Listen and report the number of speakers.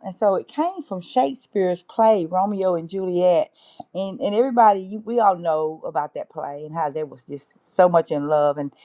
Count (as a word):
one